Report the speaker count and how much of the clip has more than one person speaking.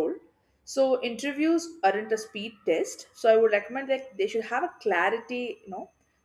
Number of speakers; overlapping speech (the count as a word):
one, no overlap